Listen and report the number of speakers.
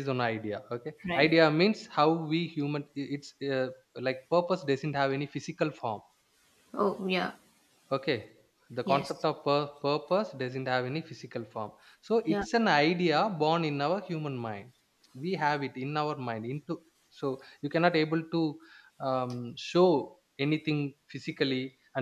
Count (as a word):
two